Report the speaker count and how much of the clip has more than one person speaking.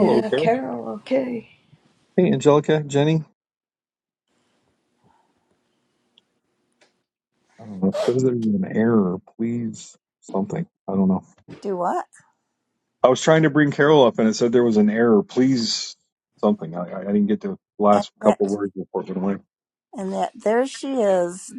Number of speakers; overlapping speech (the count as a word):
three, about 5%